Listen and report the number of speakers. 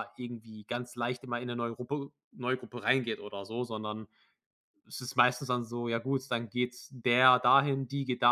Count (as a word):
one